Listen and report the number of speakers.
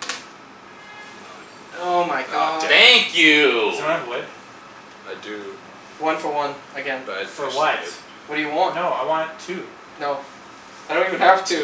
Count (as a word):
four